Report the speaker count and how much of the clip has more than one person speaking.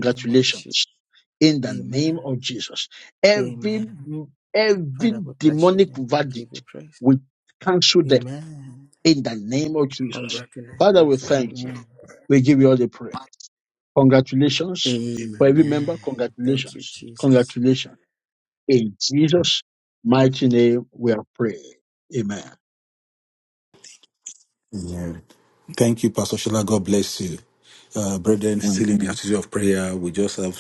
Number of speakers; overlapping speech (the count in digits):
3, about 22%